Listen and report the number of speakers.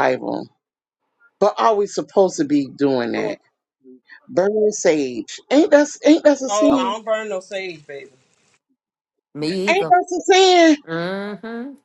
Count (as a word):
three